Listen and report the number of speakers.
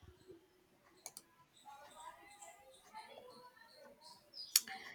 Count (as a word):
zero